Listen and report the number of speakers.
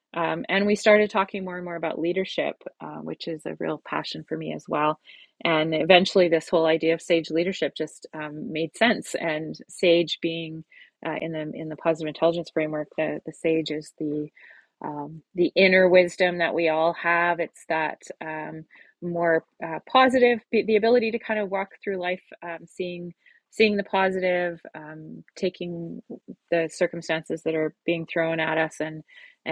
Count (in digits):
1